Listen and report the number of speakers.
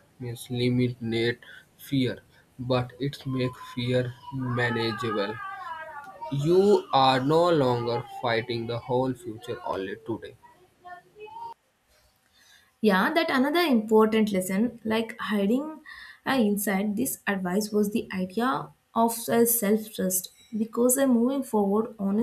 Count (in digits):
2